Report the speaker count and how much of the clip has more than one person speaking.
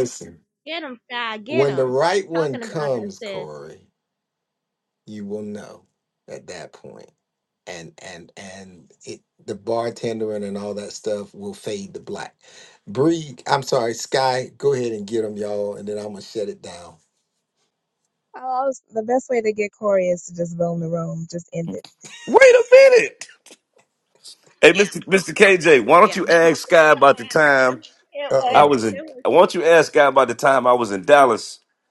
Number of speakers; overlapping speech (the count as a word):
four, about 11%